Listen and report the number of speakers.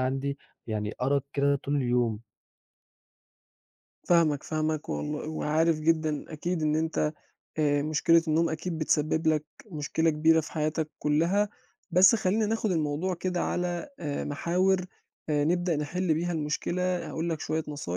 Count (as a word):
two